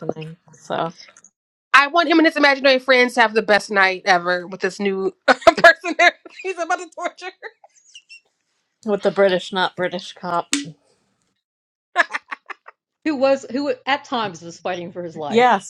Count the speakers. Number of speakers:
three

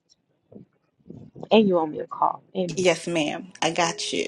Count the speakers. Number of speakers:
two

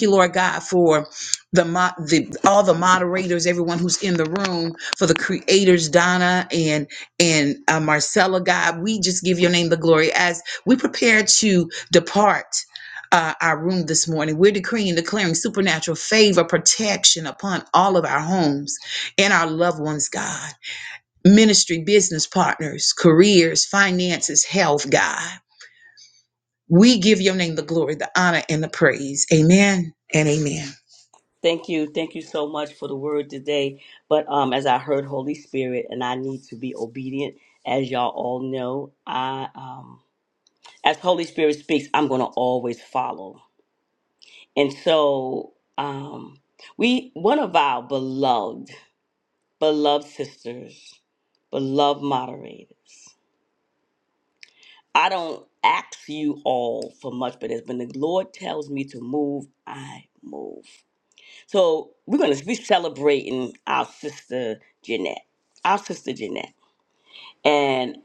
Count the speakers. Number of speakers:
two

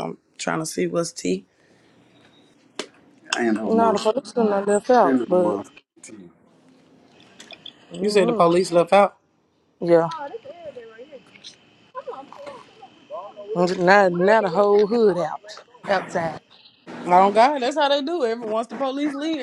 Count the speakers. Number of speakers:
three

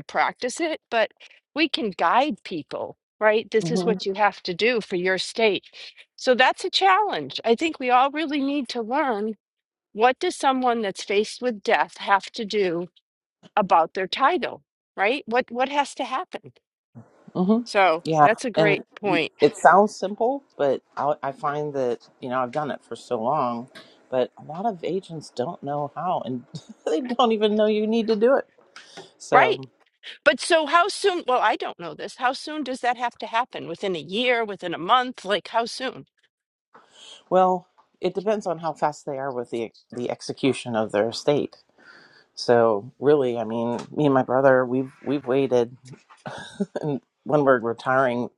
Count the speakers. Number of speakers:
two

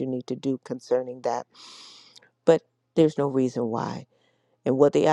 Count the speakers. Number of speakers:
one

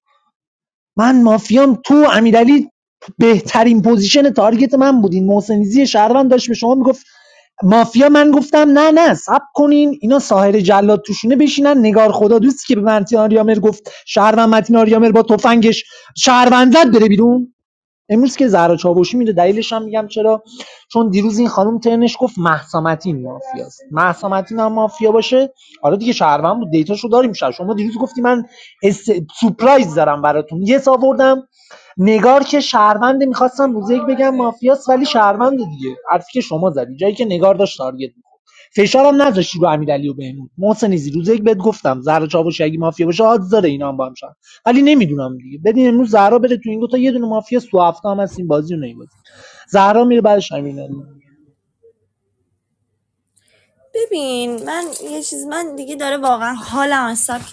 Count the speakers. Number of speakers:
two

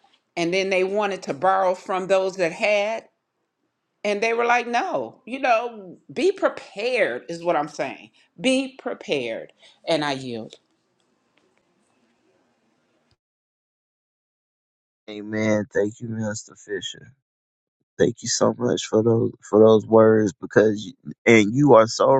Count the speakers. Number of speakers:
two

